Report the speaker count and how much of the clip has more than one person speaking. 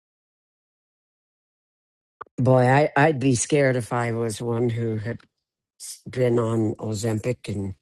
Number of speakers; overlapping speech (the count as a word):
one, no overlap